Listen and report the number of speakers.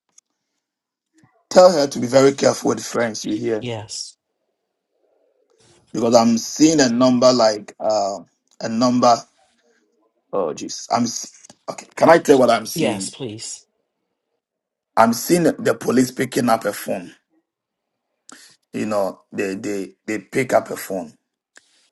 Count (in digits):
2